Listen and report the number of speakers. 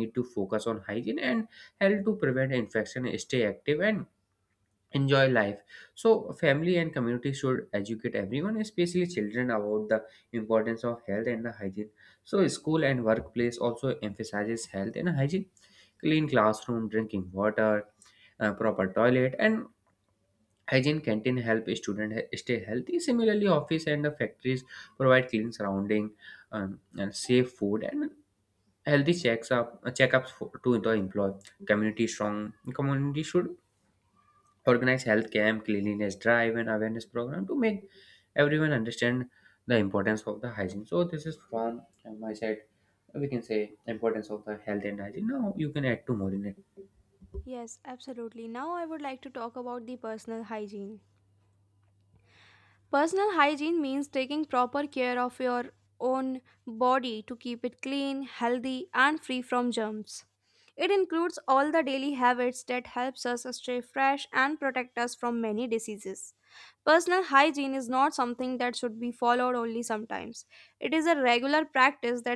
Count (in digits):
2